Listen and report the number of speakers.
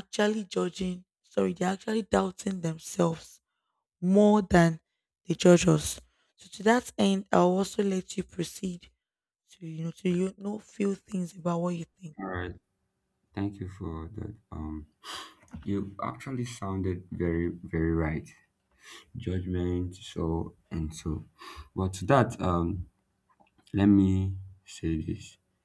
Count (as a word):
two